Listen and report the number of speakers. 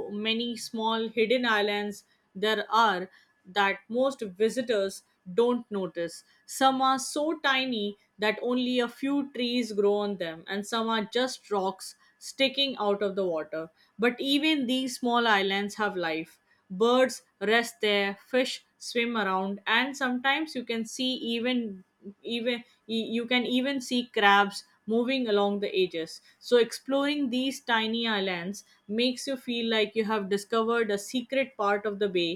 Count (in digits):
1